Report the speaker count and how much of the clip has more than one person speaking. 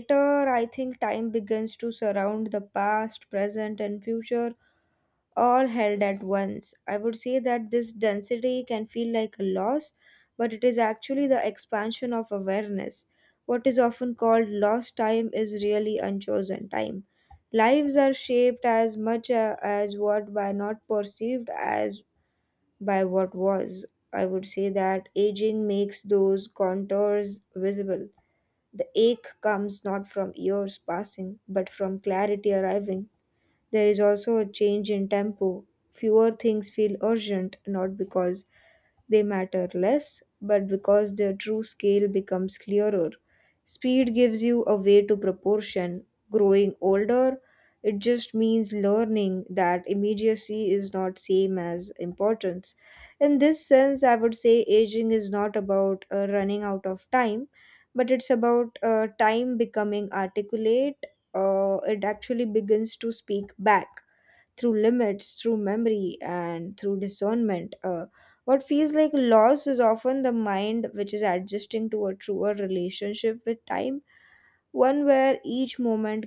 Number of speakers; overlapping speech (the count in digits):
1, no overlap